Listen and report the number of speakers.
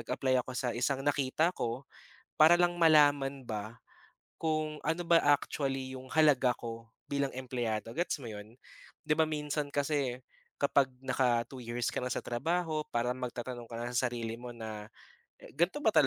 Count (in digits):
1